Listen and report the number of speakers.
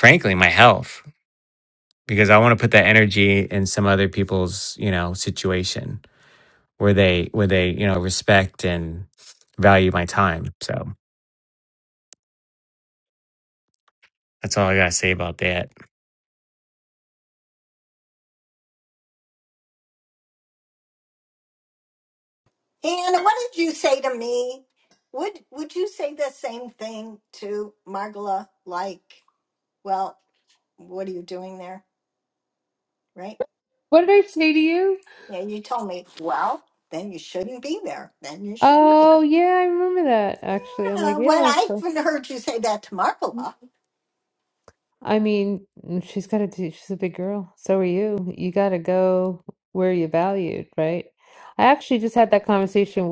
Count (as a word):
three